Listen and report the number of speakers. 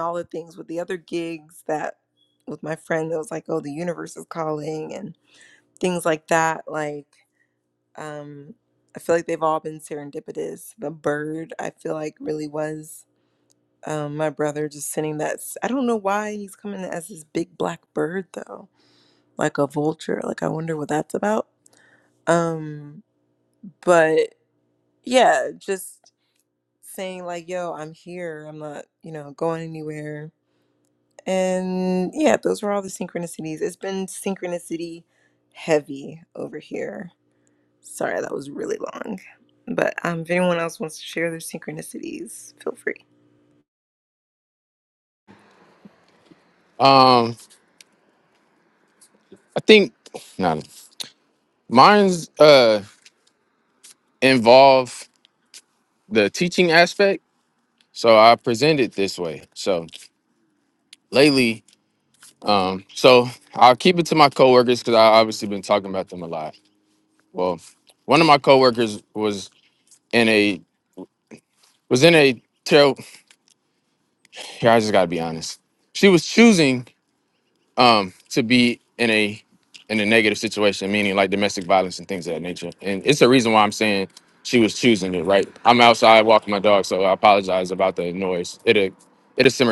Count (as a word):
two